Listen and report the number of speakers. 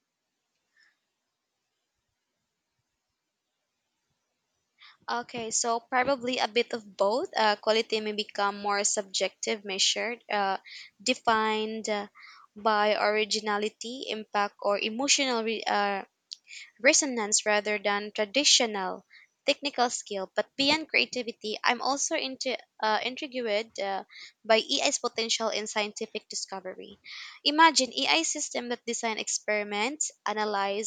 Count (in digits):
1